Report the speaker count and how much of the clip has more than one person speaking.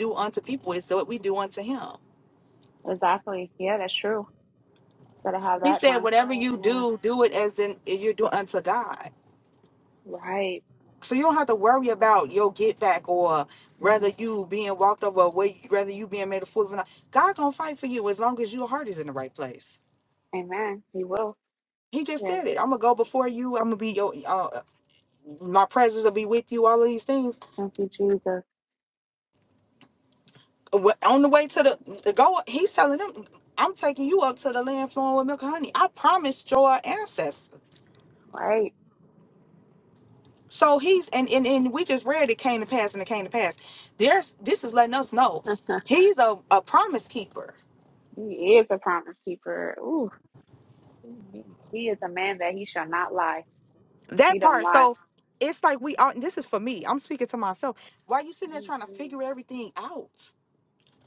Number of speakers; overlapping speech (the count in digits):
2, about 5%